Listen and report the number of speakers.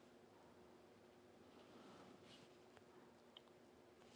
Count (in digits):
0